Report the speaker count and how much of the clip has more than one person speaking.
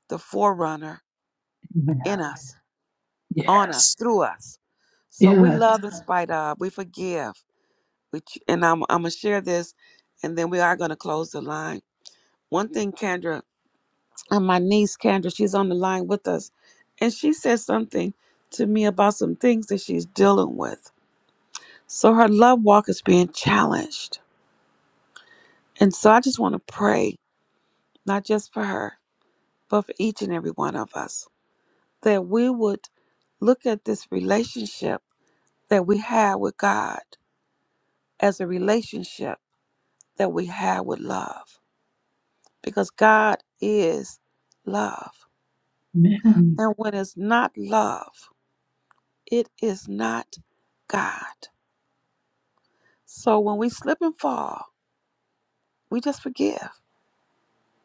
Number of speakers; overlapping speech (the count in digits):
2, about 1%